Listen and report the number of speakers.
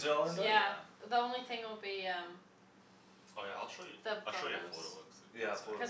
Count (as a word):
three